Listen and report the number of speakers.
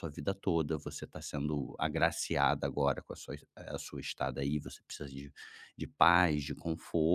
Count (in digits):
1